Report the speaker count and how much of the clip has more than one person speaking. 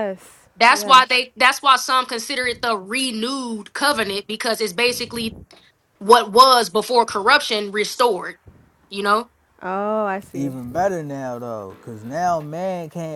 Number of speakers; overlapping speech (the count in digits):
3, about 4%